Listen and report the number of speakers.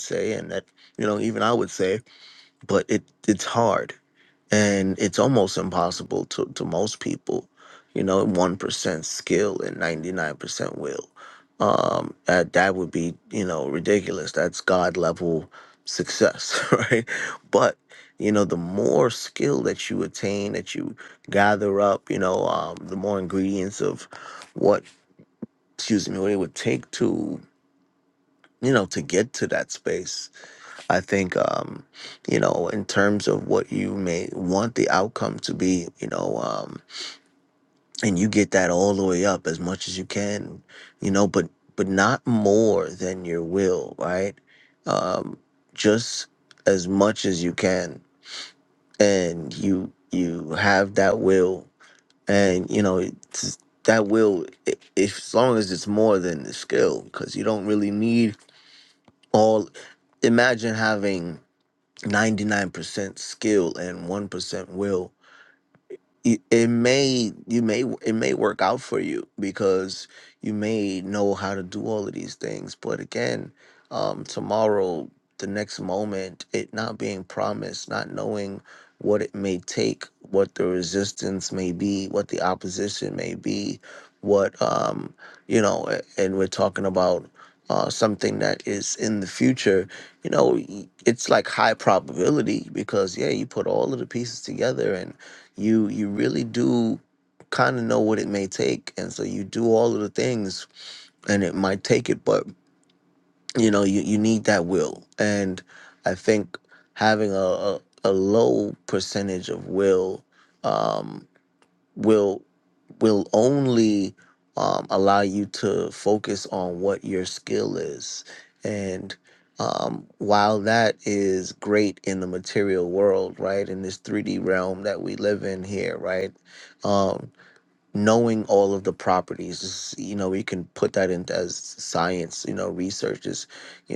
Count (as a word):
one